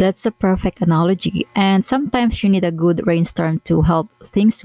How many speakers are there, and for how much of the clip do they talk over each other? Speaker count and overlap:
1, no overlap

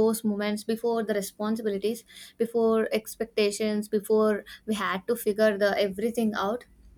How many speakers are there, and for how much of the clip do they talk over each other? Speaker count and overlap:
1, no overlap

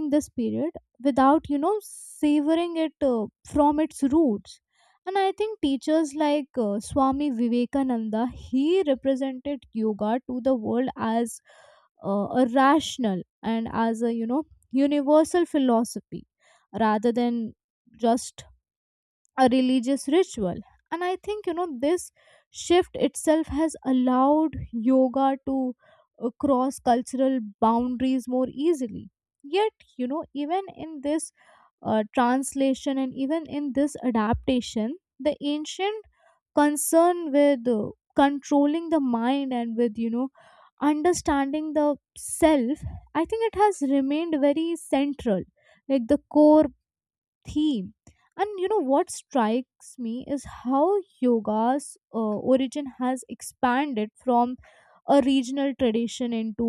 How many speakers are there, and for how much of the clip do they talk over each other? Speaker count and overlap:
1, no overlap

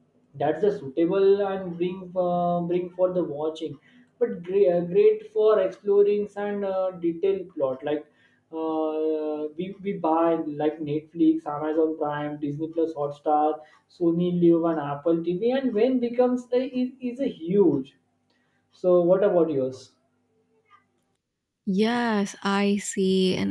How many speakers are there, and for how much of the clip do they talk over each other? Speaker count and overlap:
2, no overlap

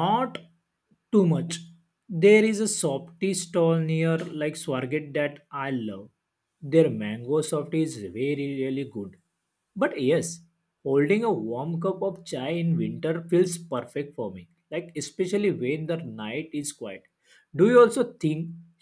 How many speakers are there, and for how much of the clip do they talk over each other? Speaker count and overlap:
1, no overlap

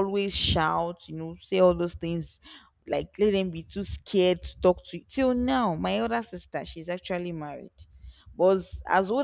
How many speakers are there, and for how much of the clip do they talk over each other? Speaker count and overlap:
1, no overlap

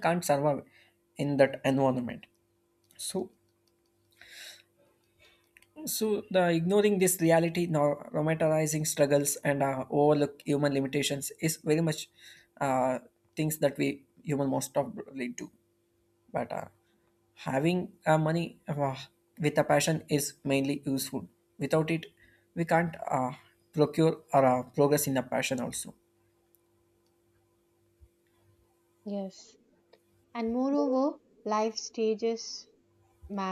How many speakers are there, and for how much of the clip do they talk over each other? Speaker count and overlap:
2, no overlap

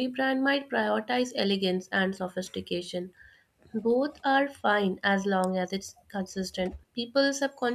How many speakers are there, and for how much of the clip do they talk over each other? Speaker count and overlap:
1, no overlap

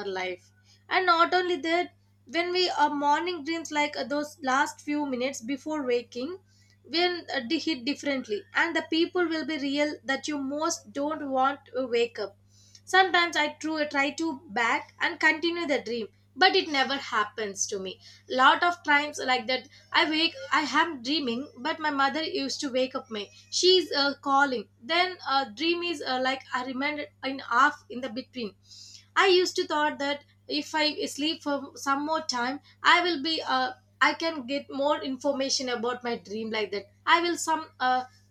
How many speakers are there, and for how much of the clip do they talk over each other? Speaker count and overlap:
1, no overlap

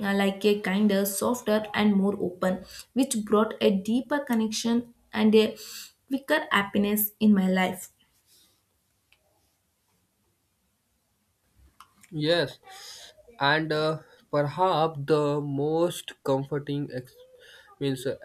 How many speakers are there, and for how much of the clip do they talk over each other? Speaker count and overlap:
2, no overlap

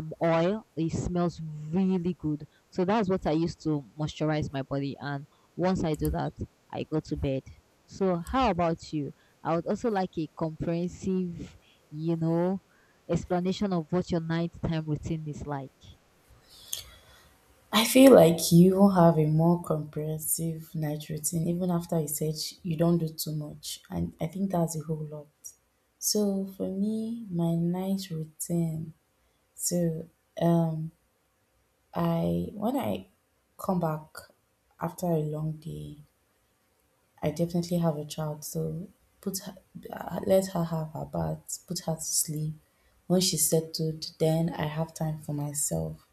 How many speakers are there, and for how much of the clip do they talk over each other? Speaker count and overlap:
2, no overlap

